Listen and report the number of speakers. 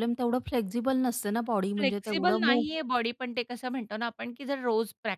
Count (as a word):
two